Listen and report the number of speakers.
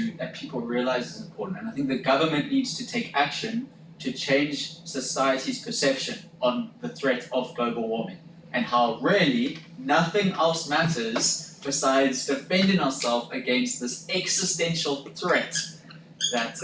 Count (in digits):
1